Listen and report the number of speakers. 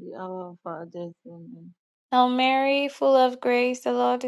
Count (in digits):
2